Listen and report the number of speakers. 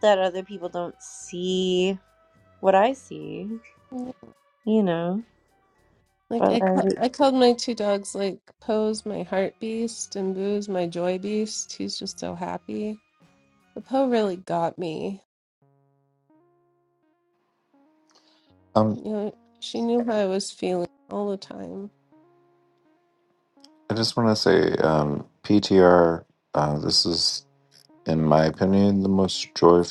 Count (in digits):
3